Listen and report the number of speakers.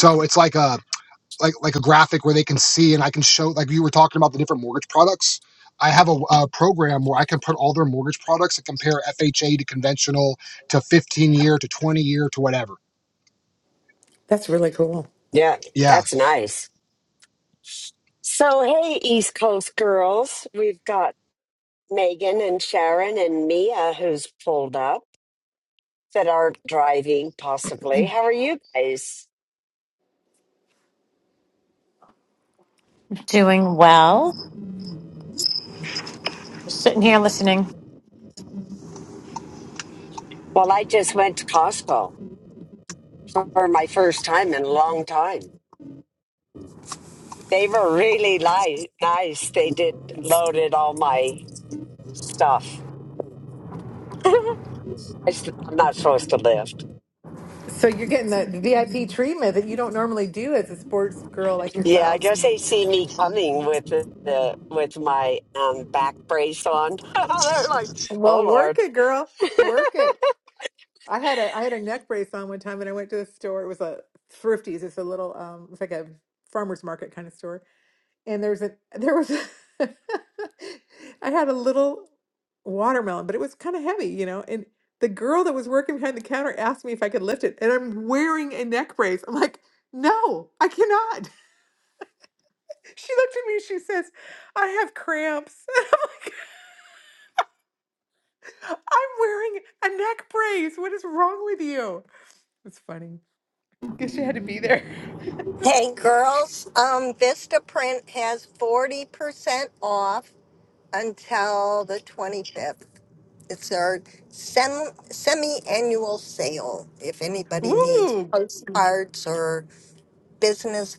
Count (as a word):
five